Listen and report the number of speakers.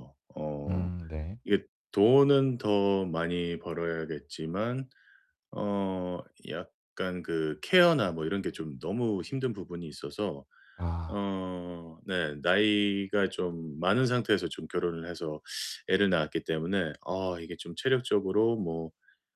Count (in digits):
2